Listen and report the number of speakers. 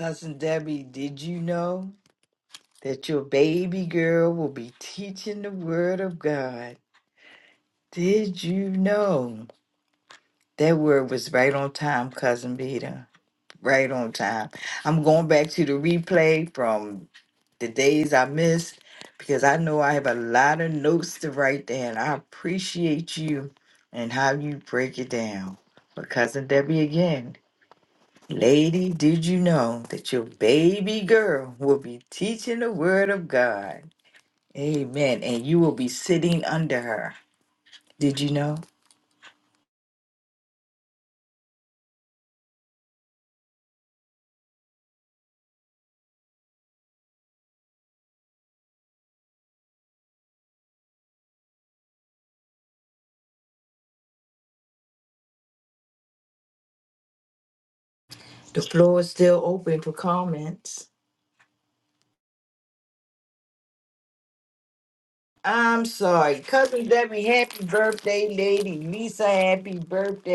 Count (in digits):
1